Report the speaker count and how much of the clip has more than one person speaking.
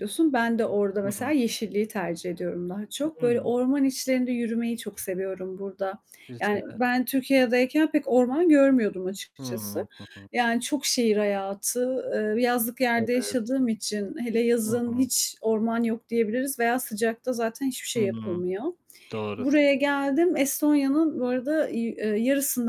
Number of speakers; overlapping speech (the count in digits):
2, about 11%